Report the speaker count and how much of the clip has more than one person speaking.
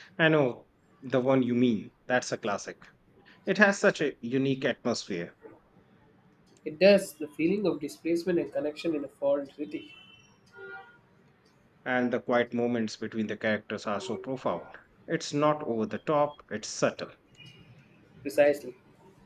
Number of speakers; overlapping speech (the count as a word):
two, no overlap